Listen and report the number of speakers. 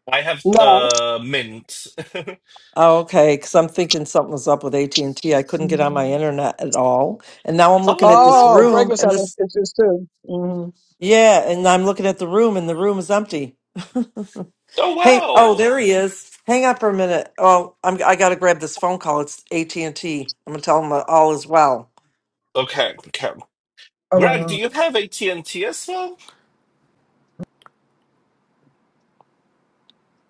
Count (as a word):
three